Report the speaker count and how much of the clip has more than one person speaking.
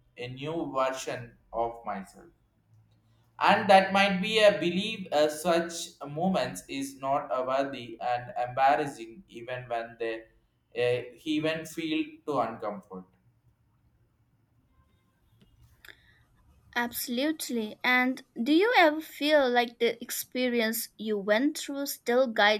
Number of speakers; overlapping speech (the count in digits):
2, no overlap